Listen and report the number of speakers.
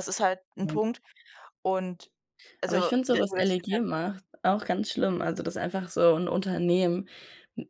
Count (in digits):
2